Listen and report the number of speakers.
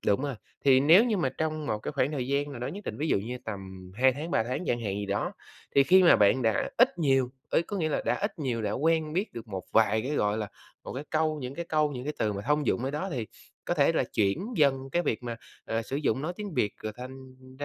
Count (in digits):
1